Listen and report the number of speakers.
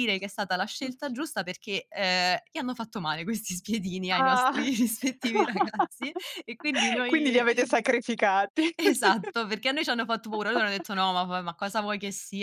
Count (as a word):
two